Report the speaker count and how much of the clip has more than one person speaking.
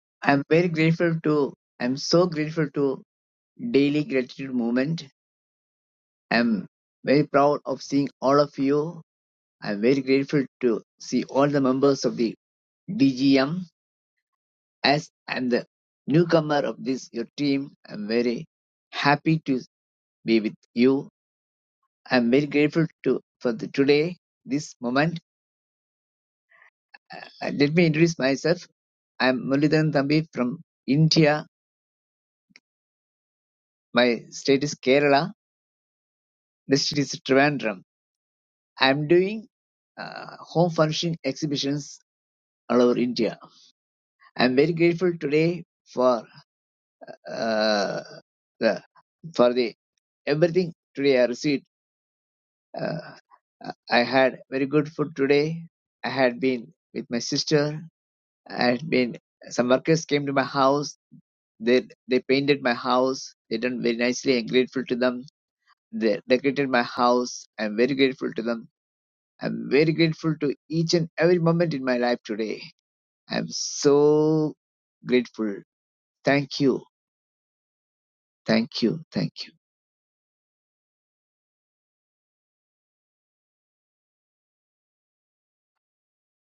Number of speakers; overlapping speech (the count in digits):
1, no overlap